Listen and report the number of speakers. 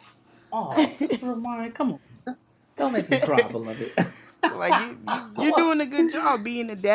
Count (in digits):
2